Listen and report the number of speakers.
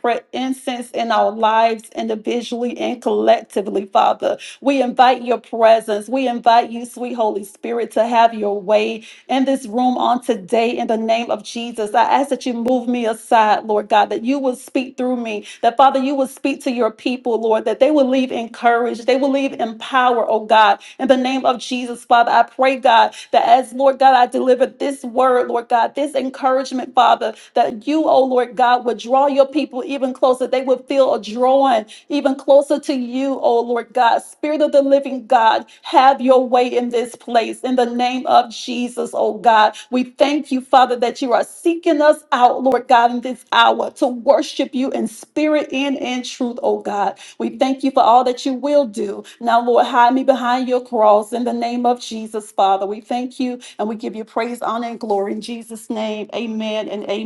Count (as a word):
one